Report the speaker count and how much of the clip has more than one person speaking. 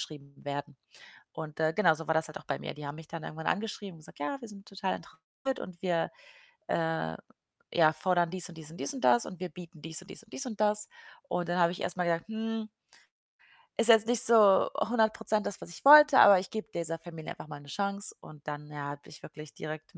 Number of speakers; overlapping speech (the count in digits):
1, no overlap